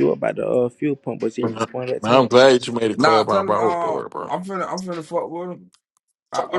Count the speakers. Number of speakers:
3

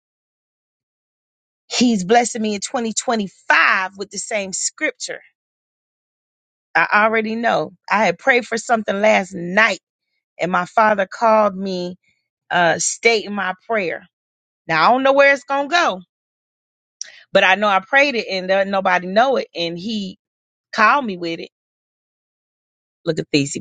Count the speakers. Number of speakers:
1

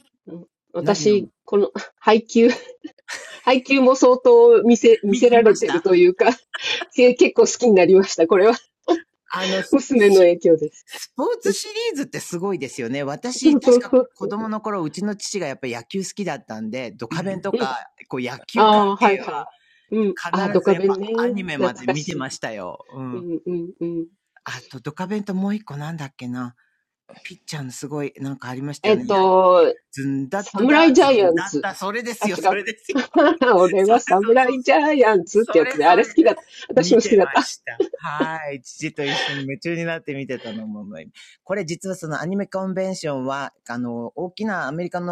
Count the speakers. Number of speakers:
2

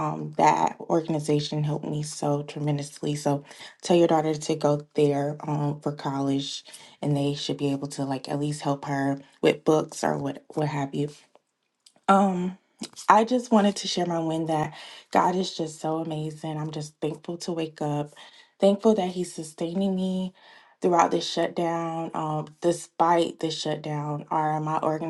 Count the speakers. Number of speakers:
1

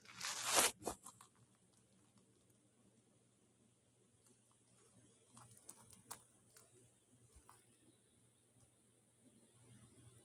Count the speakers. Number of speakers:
0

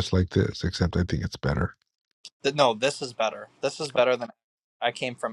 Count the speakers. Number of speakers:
2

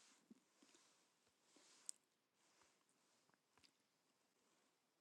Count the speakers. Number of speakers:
0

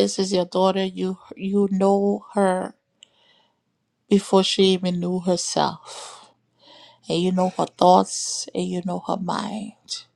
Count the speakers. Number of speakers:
1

